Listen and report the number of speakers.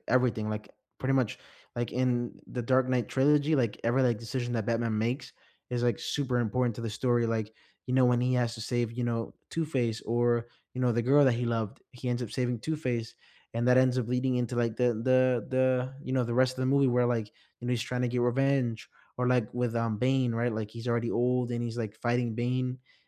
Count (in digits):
1